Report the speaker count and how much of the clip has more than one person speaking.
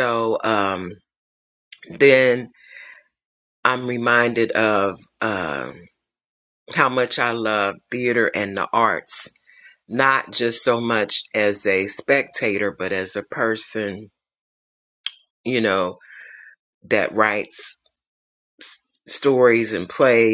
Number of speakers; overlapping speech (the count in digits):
1, no overlap